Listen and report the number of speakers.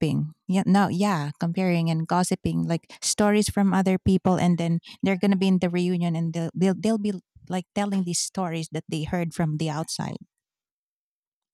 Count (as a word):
one